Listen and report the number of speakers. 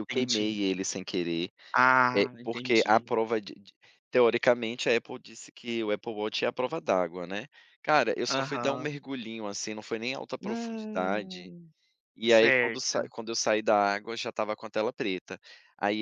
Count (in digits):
2